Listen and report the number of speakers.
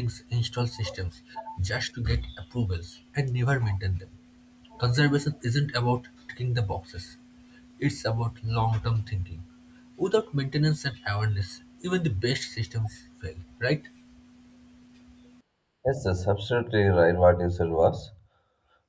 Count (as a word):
two